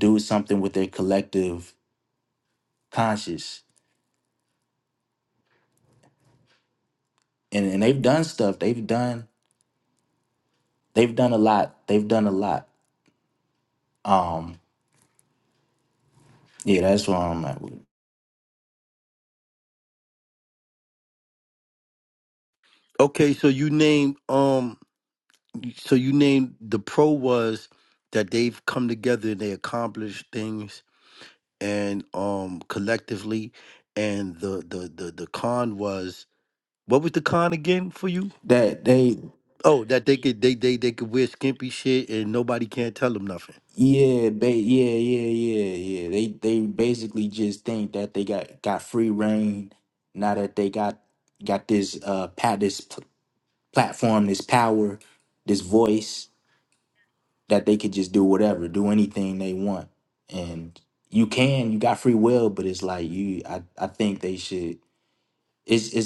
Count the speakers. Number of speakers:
two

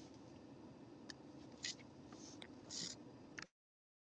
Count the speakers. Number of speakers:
zero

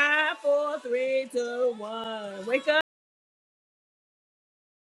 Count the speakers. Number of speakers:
one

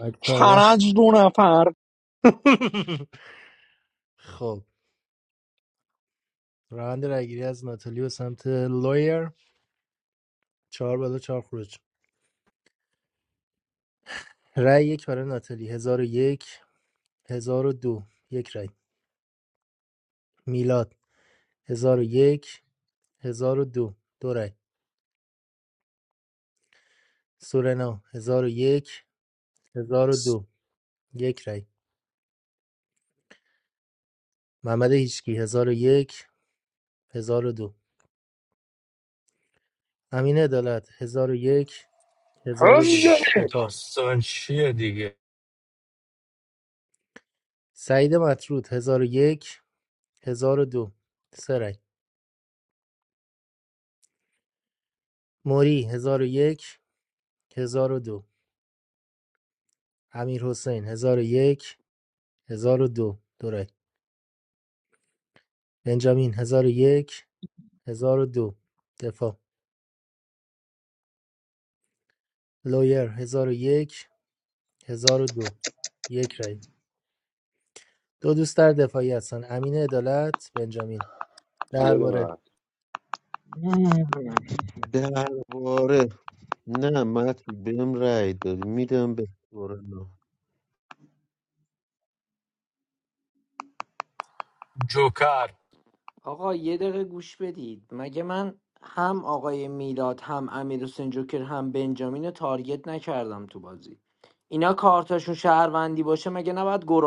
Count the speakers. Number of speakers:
five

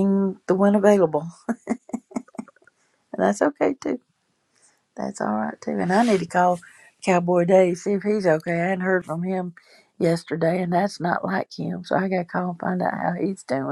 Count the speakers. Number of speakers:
one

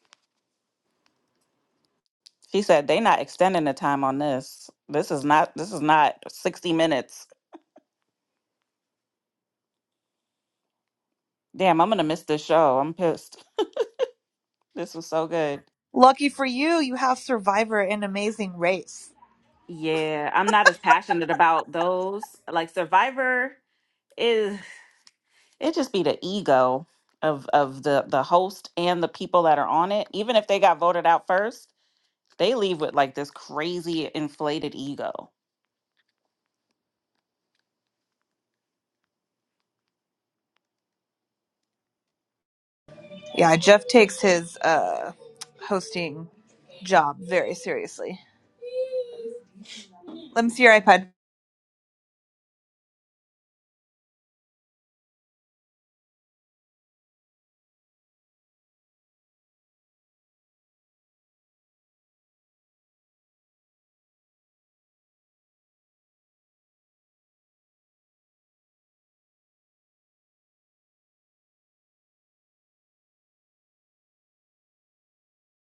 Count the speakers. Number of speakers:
two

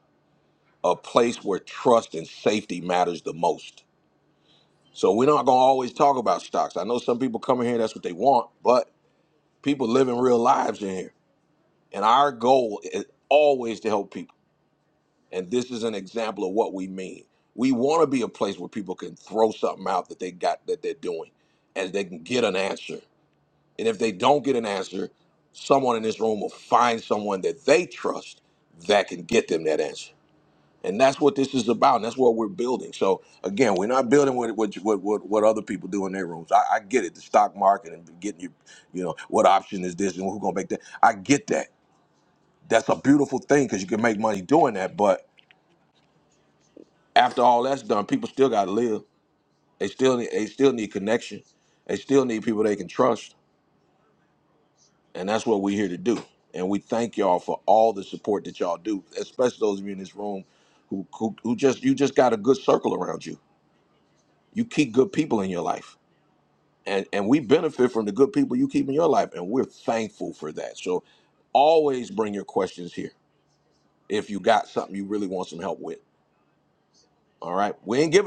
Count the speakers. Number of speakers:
one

